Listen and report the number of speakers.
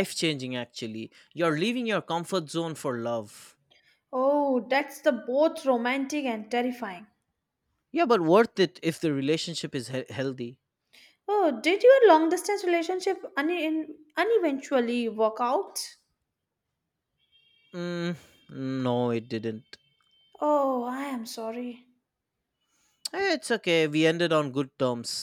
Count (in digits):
2